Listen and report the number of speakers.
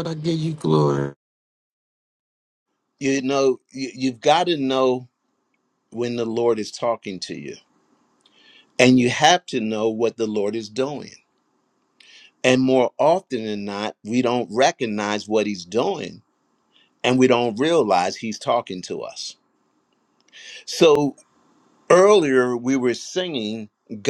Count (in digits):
2